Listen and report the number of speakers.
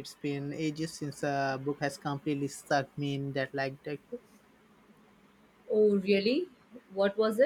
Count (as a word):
two